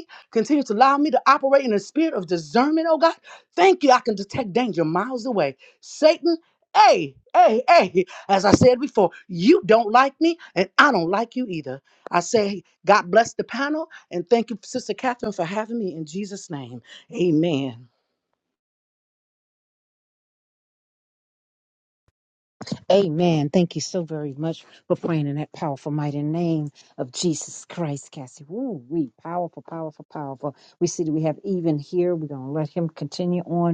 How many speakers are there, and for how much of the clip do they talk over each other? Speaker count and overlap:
two, no overlap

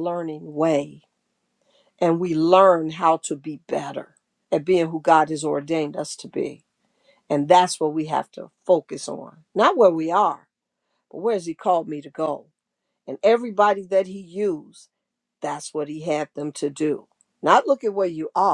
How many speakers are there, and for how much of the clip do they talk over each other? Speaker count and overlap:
one, no overlap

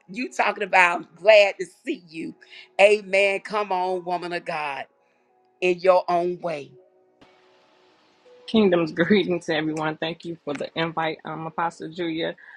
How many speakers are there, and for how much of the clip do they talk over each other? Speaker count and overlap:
two, no overlap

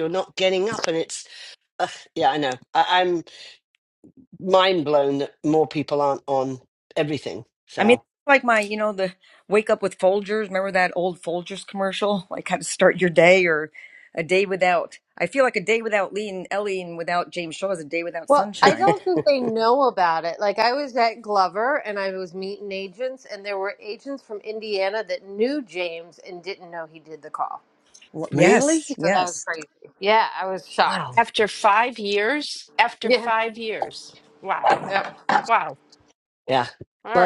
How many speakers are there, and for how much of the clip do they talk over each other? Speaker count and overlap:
four, about 6%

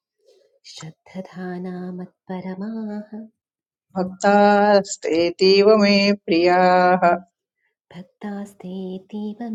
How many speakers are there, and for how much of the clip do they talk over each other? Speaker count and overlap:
two, no overlap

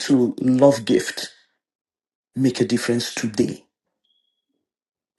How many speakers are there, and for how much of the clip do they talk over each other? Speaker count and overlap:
one, no overlap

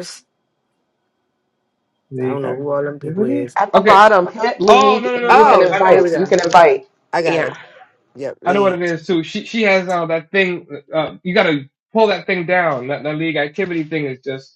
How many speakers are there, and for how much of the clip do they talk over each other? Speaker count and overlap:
three, about 24%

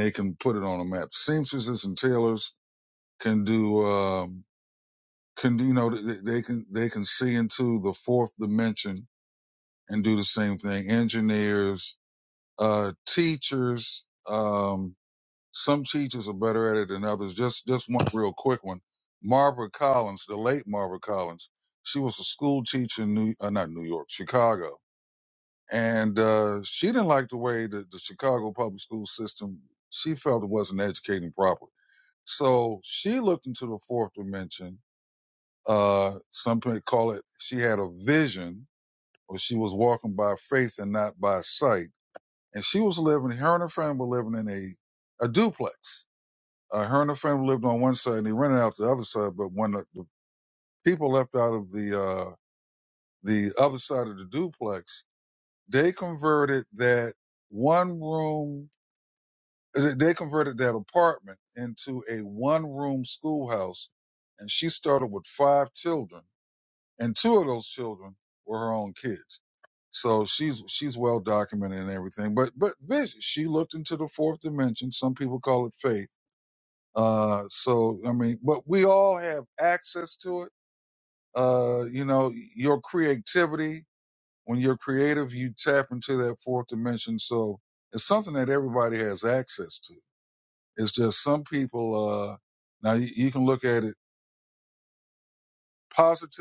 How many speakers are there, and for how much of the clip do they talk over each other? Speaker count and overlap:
one, no overlap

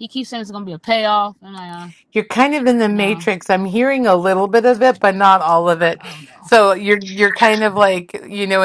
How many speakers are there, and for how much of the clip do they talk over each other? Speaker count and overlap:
two, about 5%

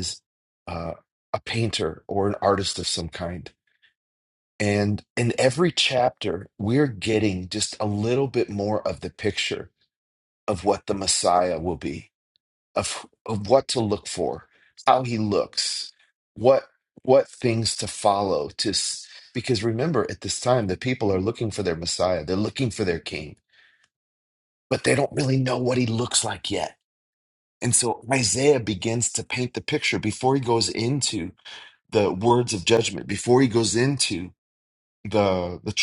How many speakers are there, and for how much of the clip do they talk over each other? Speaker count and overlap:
one, no overlap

